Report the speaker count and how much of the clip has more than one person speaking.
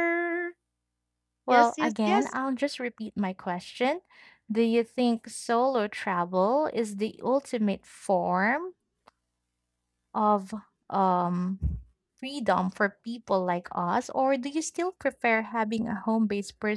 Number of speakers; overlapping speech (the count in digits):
2, about 5%